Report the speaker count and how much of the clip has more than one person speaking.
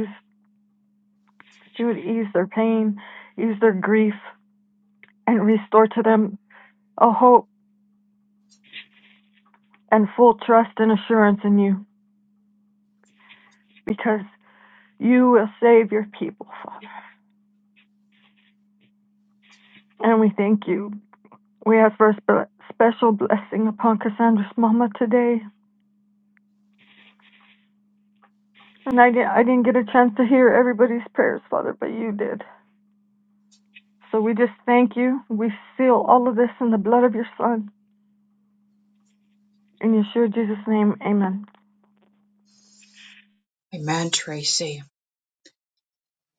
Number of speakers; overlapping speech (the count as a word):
two, no overlap